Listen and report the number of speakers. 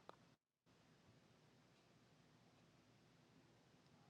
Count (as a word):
zero